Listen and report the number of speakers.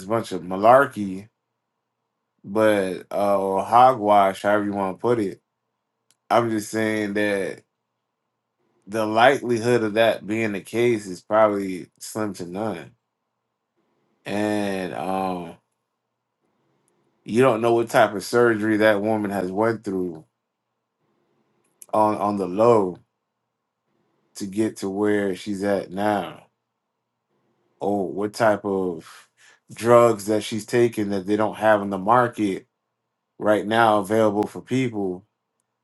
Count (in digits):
1